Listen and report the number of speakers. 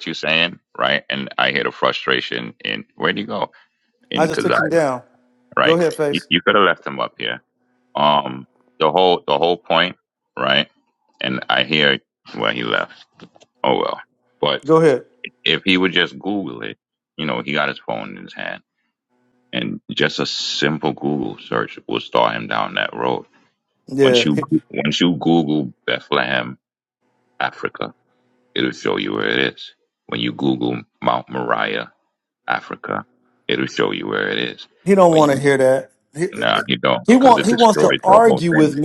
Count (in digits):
2